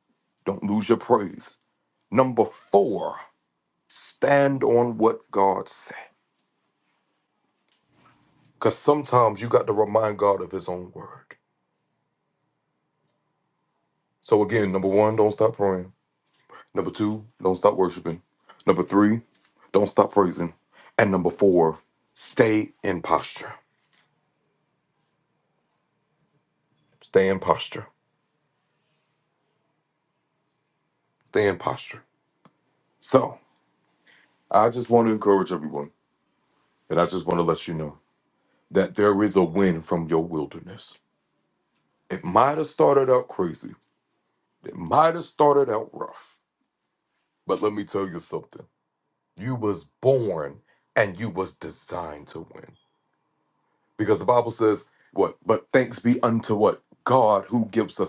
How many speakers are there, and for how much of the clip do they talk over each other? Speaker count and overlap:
one, no overlap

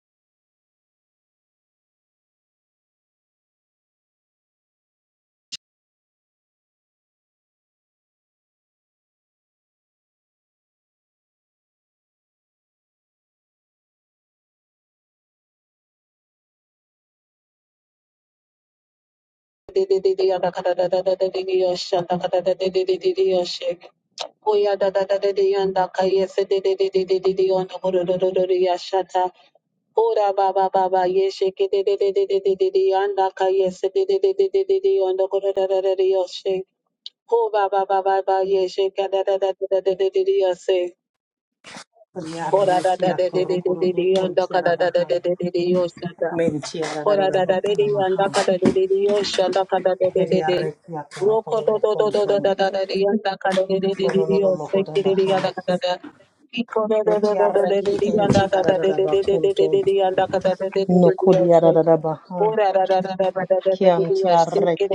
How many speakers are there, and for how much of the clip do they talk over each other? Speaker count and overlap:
two, about 18%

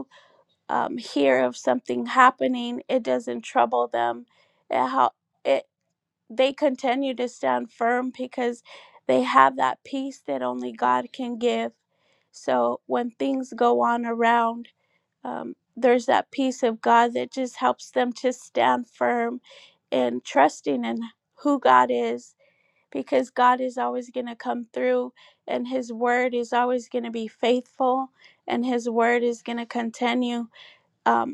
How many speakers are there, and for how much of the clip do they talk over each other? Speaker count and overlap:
one, no overlap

